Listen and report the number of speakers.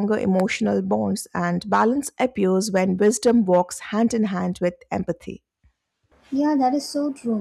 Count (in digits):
2